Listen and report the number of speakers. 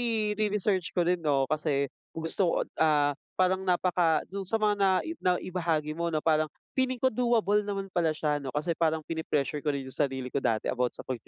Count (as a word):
one